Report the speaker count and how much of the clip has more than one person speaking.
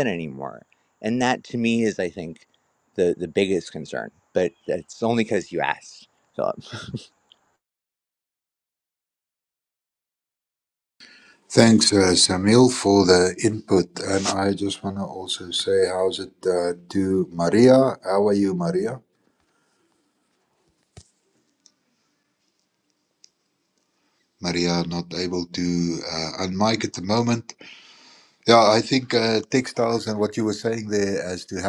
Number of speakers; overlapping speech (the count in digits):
2, no overlap